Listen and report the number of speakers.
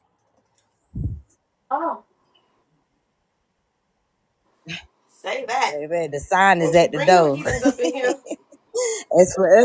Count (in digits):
2